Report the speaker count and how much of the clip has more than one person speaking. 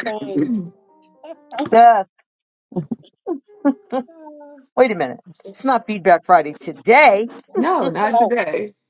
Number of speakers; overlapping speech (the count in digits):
3, about 3%